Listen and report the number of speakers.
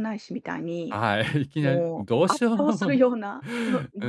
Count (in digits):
2